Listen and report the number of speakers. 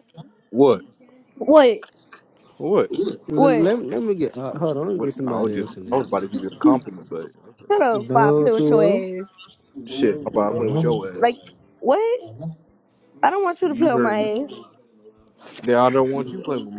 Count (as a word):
three